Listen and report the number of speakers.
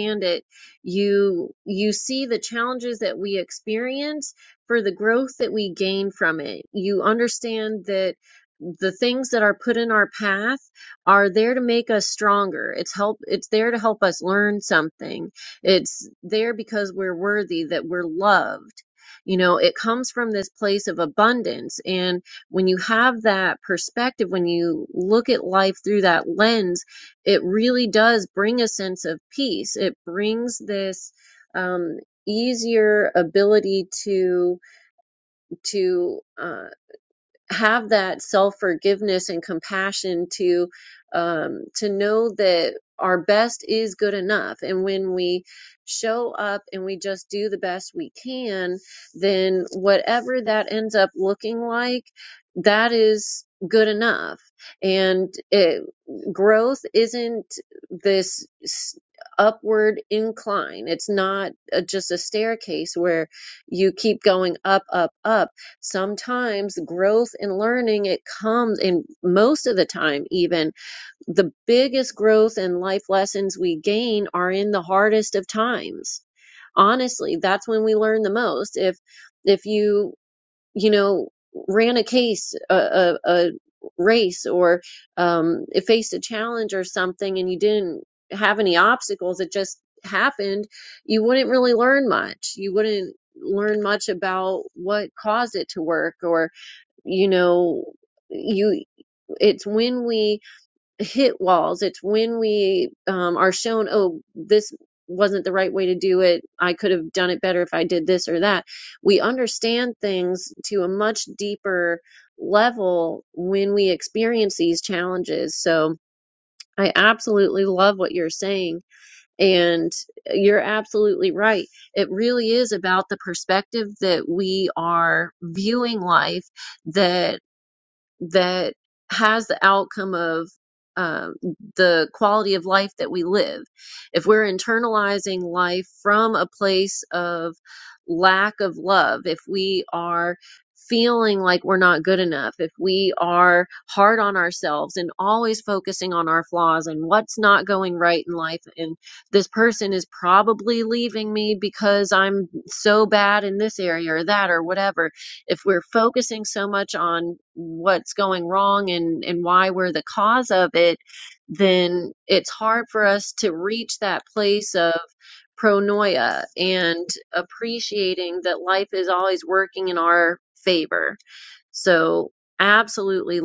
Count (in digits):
1